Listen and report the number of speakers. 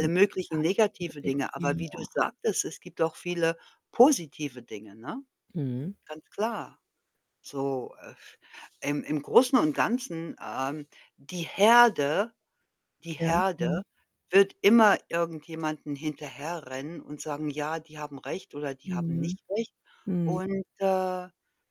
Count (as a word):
two